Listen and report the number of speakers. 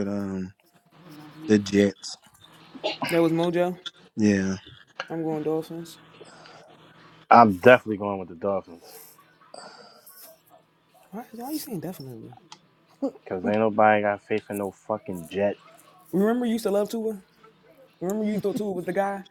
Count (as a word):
three